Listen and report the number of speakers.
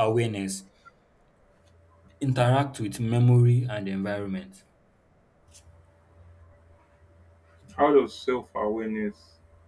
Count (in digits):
2